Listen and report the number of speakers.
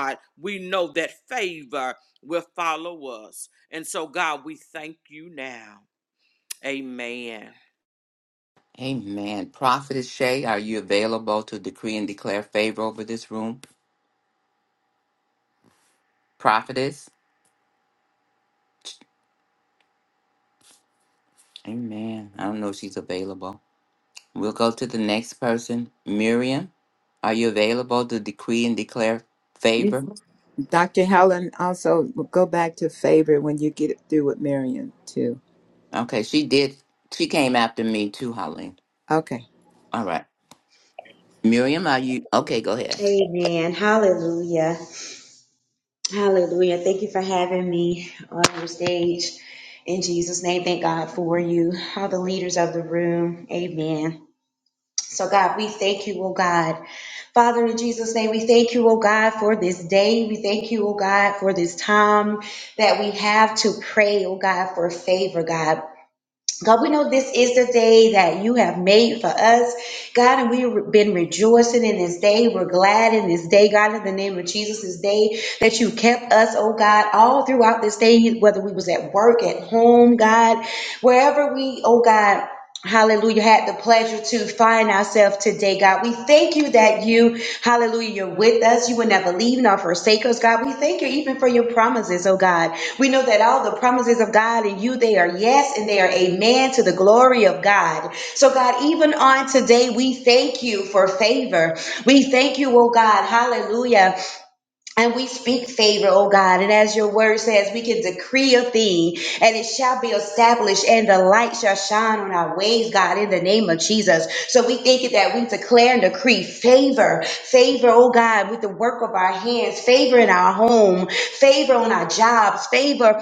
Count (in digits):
4